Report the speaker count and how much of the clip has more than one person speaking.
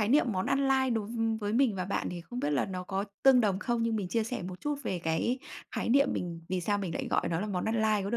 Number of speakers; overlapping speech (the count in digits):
1, no overlap